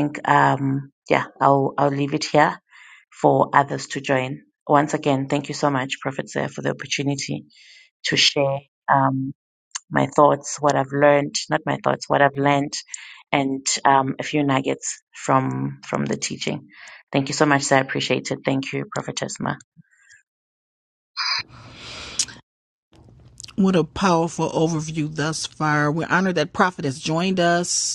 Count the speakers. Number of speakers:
2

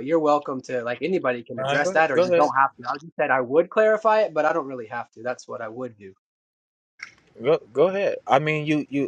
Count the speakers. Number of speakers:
2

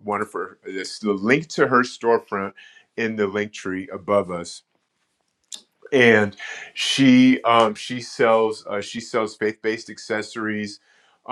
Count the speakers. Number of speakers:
1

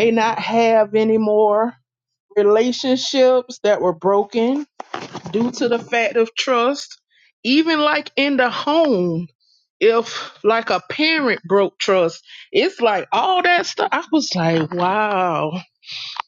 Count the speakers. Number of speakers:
1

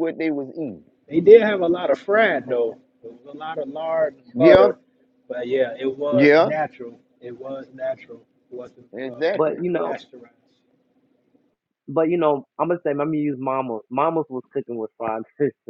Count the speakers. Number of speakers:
3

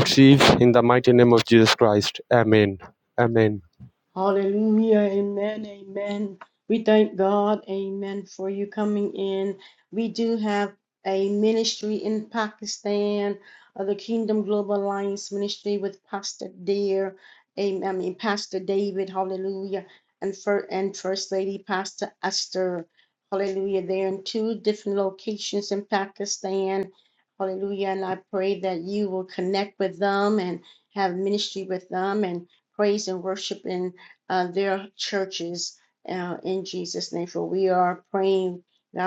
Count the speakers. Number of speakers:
2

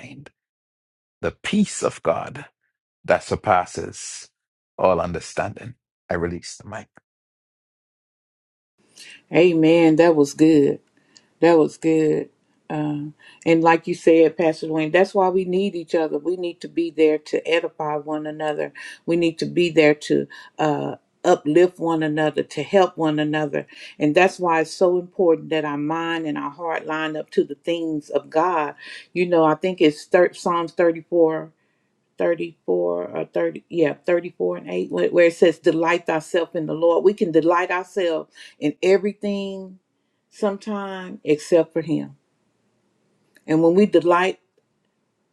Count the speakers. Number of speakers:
2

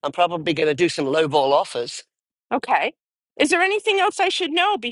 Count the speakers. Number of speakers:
2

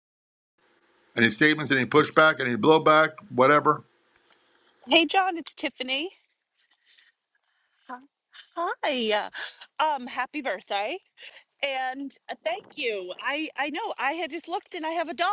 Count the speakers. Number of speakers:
2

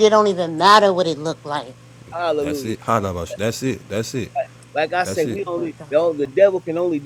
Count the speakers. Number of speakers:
3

